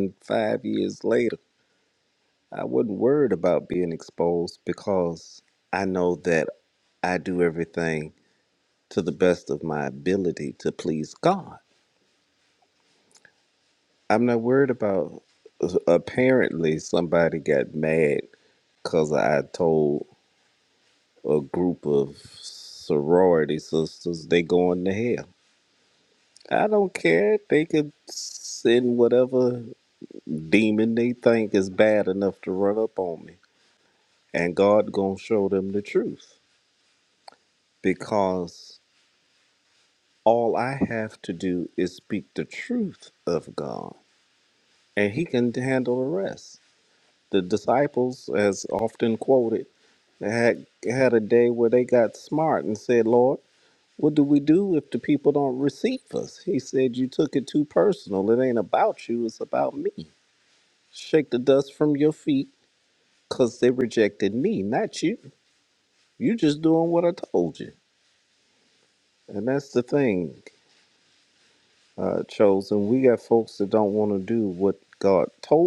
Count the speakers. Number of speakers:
1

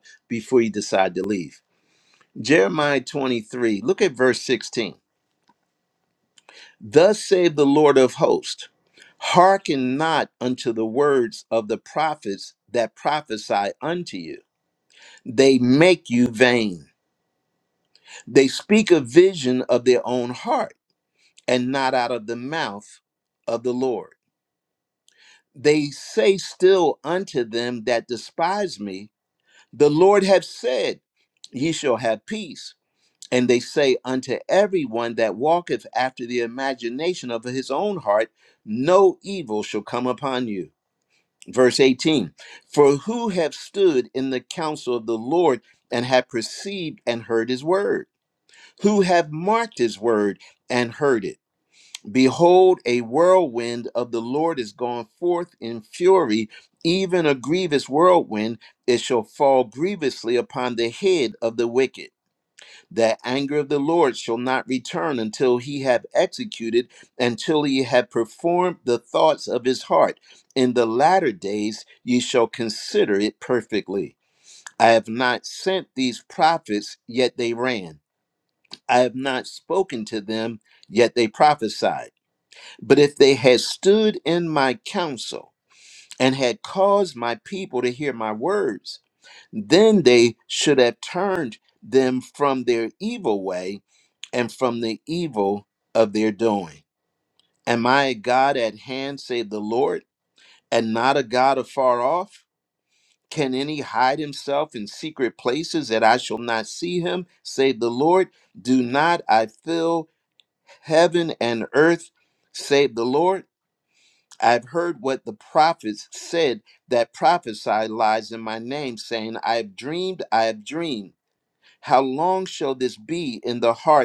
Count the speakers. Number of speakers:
1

